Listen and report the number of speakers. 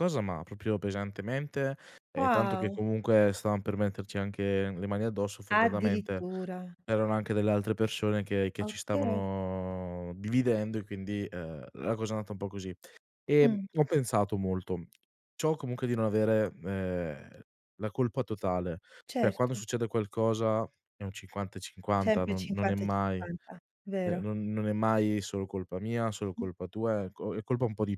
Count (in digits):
2